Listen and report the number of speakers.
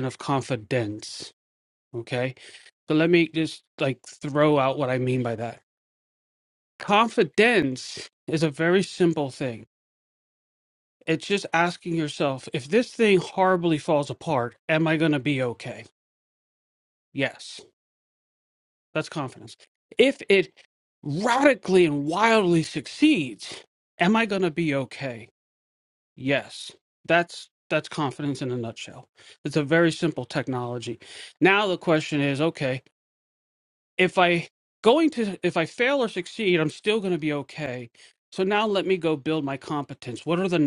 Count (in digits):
1